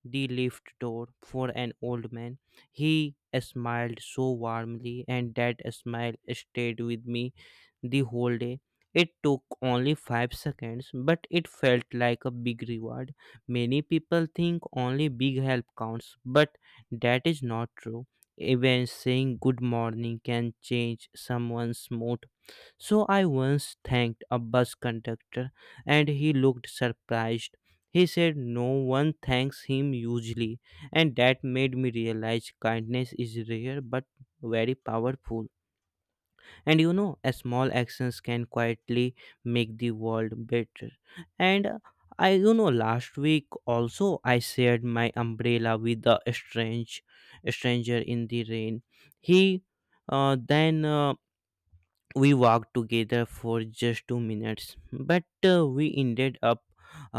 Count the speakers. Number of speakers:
1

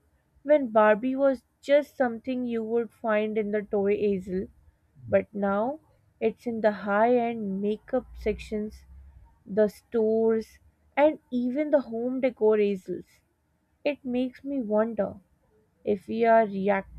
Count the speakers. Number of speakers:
1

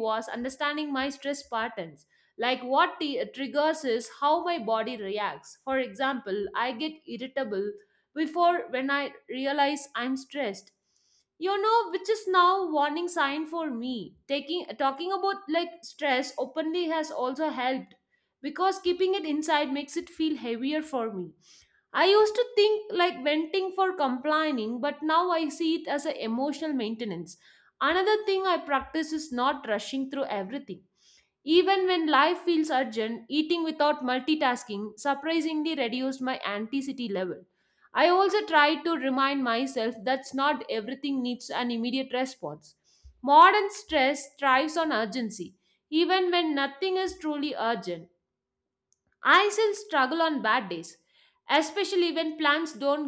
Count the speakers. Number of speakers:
1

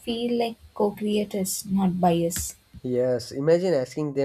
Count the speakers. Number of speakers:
2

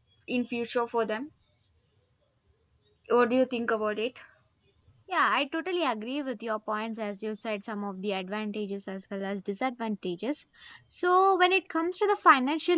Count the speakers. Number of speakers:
2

